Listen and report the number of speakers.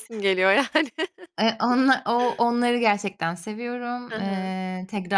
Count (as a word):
two